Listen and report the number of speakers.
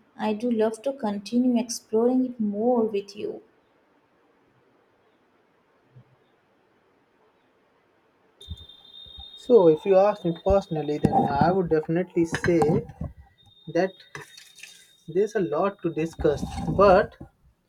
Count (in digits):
2